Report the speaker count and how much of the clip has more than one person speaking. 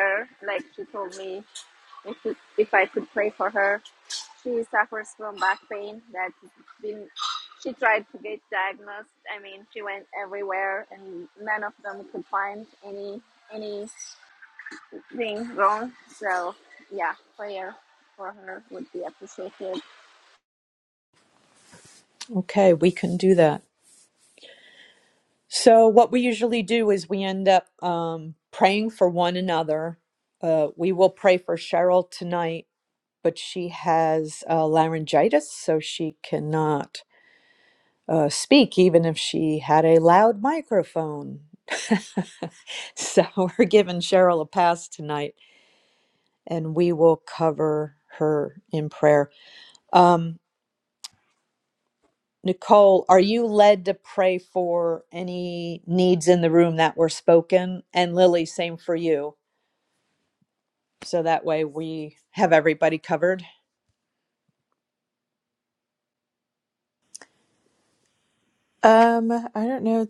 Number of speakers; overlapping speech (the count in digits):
3, no overlap